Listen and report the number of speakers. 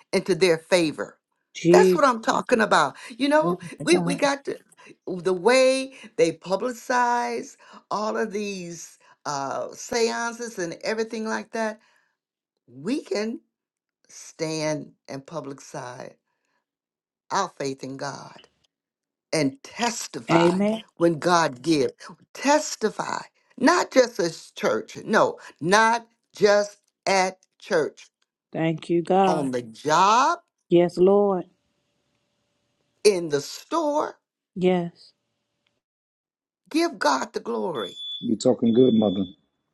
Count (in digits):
3